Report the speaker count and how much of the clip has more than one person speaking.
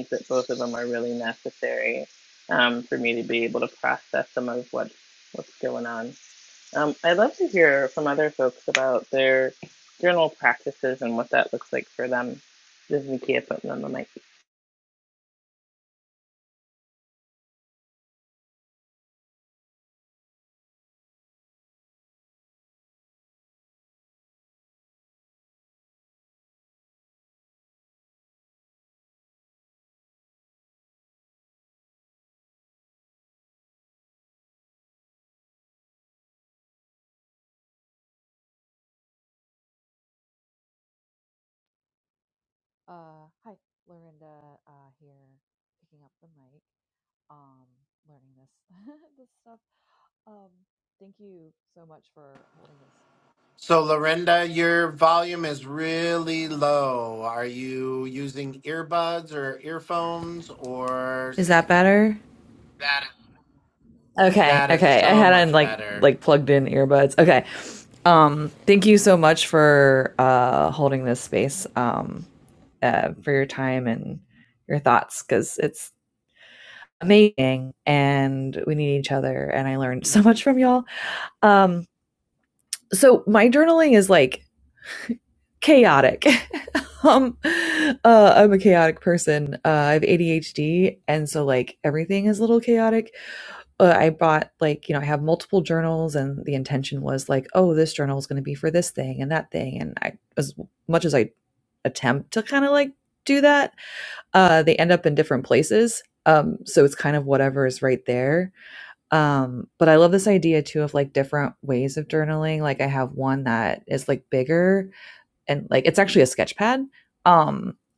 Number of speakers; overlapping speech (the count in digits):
3, about 1%